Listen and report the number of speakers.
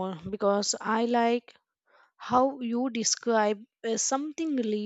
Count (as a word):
one